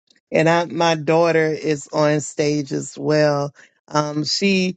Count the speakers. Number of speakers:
1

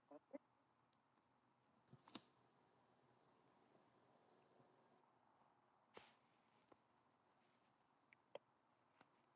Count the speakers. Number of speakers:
0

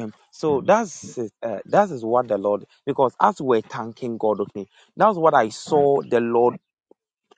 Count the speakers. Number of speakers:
1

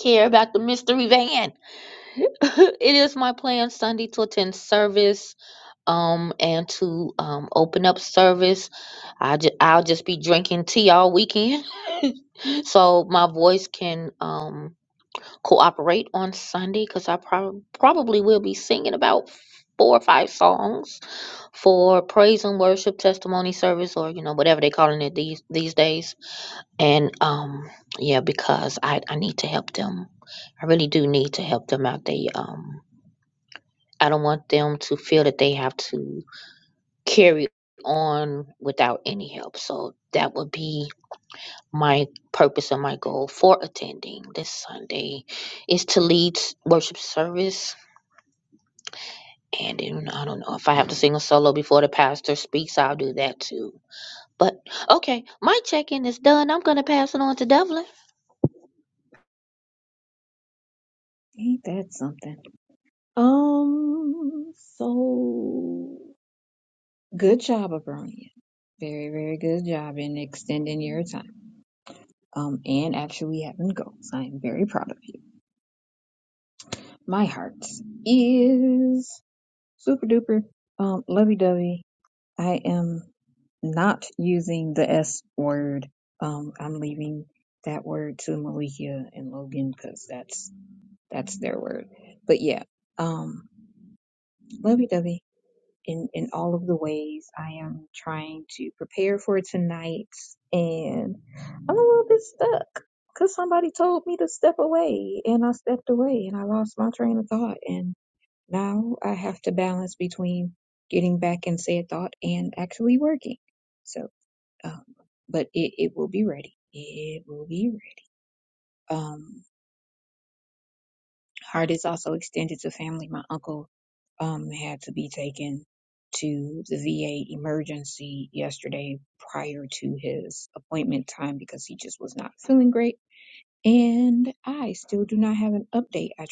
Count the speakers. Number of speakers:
2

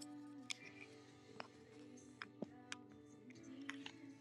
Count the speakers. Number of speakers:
0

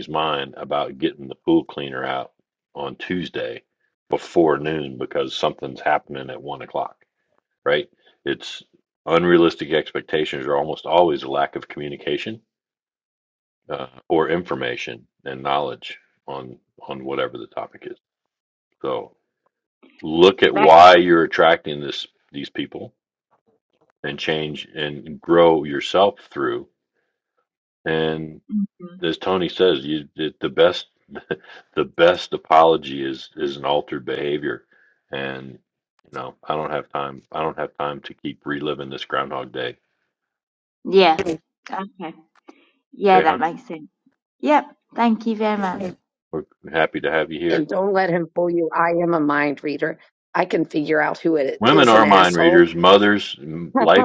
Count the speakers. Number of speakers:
3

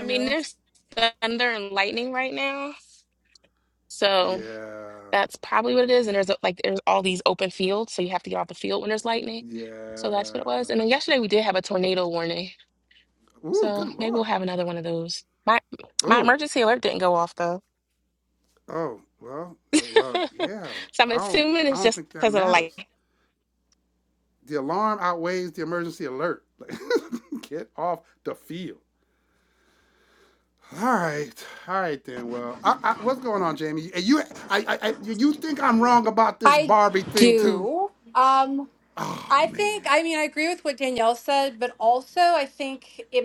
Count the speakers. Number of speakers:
3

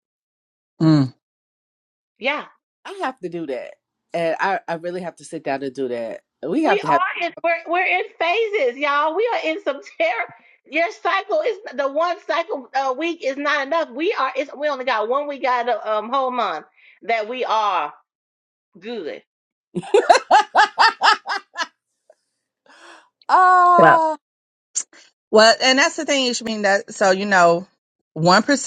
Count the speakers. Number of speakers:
3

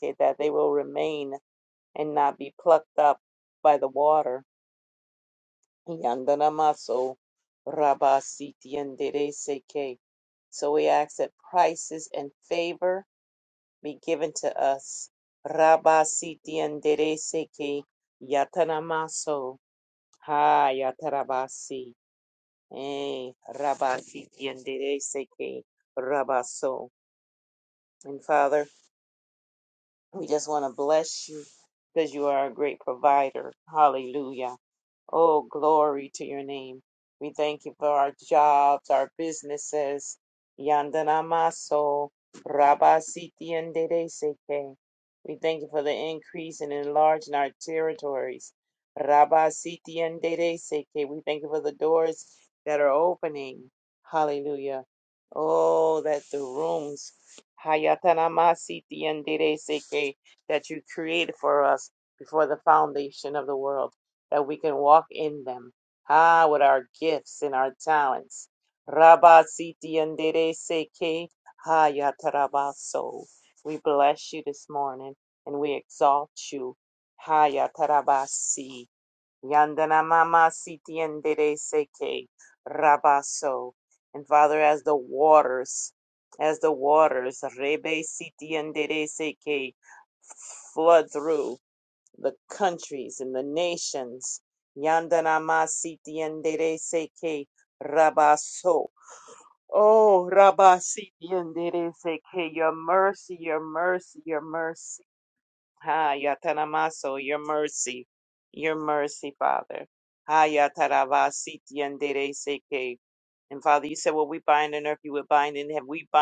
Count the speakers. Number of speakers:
1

